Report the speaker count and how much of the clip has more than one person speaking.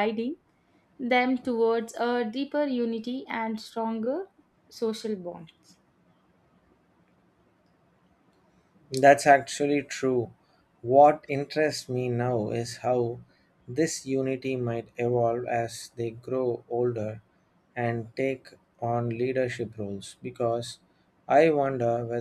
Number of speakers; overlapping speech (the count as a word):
two, no overlap